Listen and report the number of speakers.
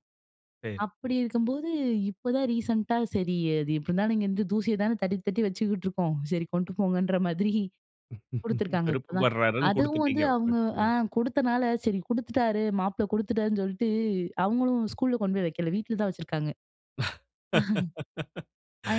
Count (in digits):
2